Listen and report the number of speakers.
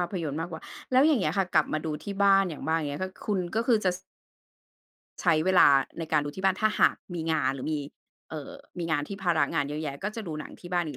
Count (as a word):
one